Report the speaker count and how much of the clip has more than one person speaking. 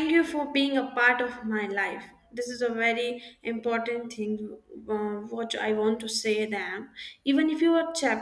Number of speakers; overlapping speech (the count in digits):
1, no overlap